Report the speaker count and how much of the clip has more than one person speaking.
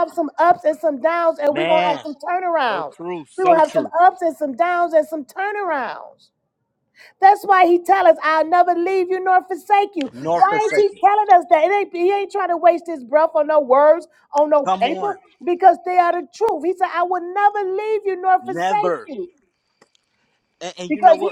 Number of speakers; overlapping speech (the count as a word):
two, about 18%